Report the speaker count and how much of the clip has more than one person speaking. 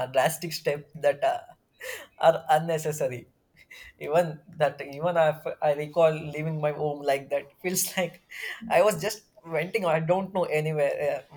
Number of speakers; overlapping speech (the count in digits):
1, no overlap